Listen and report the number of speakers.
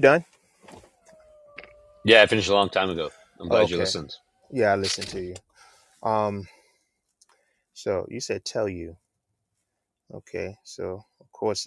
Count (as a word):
two